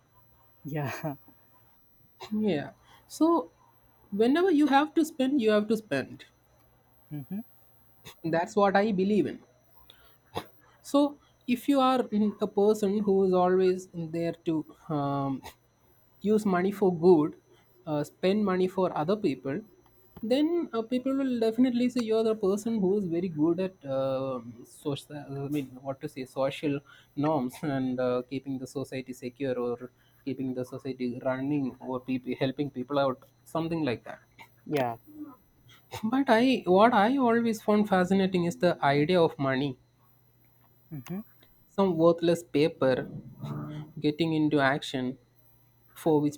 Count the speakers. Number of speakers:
2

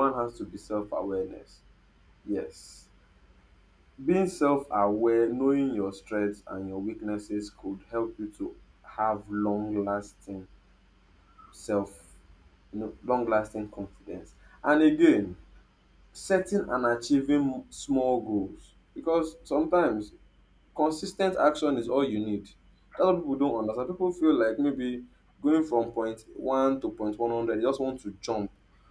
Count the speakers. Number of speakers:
1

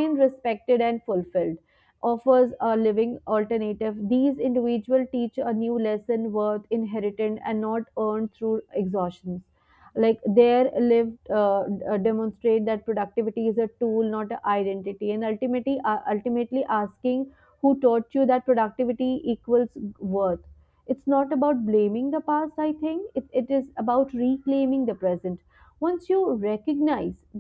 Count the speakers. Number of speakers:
1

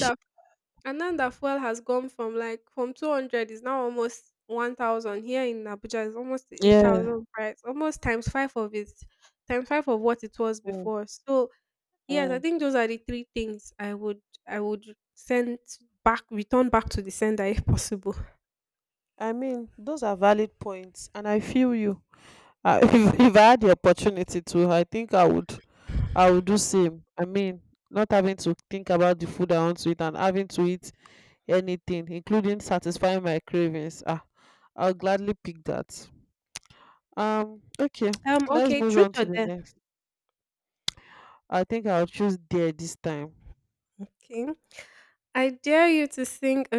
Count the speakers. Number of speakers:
2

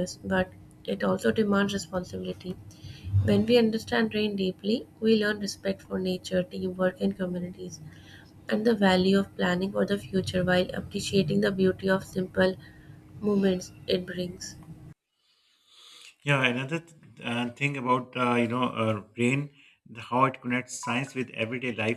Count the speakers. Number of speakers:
2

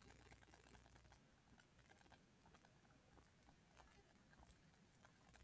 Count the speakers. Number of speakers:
0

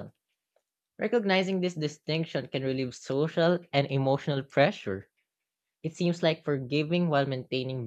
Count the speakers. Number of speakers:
1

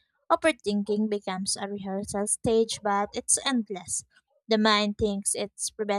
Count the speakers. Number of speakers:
1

